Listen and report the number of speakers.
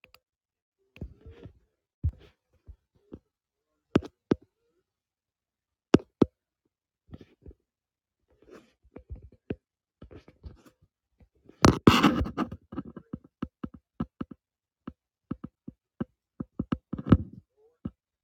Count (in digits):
0